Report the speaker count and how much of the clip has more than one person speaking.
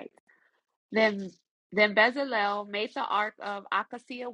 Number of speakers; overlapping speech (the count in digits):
1, no overlap